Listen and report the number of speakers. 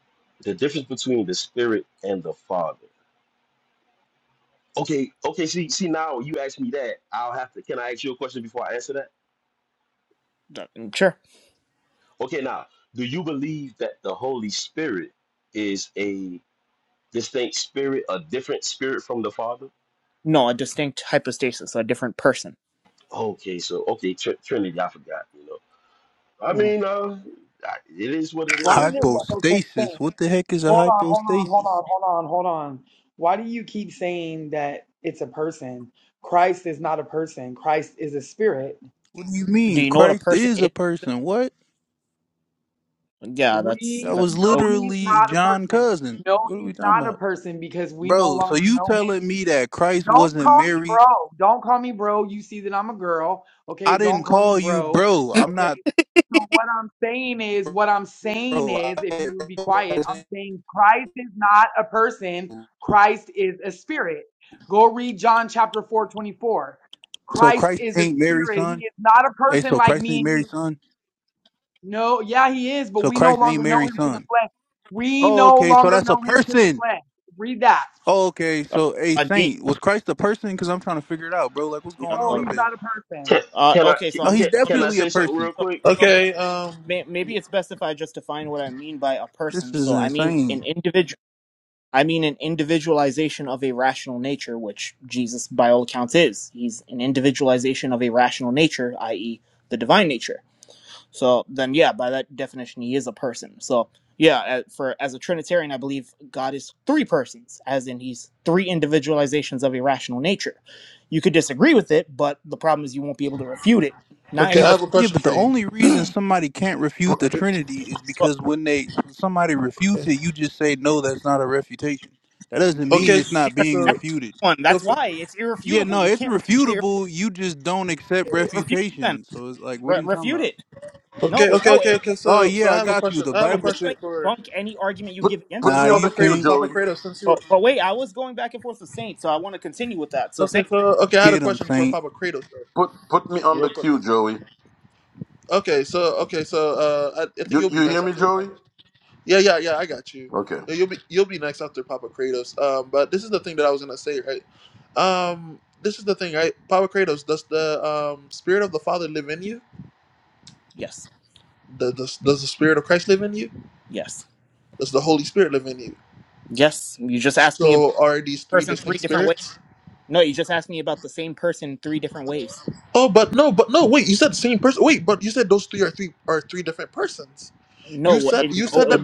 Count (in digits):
6